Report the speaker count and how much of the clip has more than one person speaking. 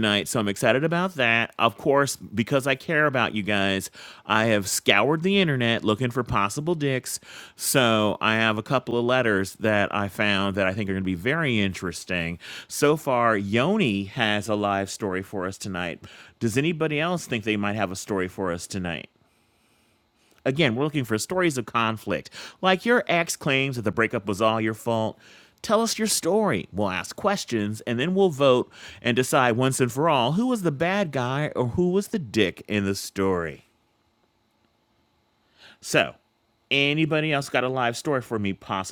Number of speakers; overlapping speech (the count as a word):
one, no overlap